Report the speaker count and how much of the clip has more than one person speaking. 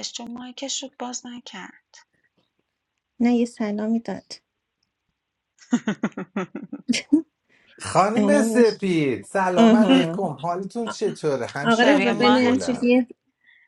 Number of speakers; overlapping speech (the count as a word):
three, about 18%